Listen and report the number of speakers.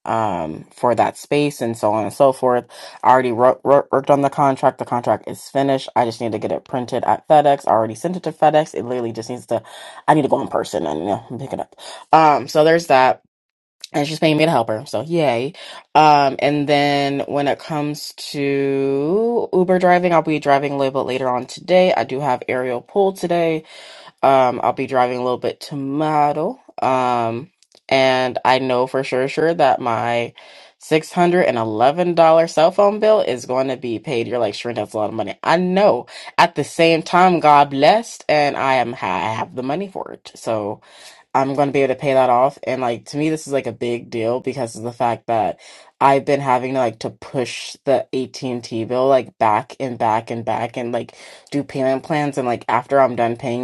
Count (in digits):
1